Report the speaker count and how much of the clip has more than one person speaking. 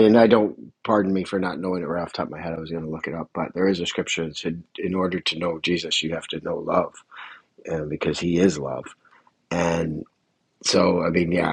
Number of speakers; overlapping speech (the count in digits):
1, no overlap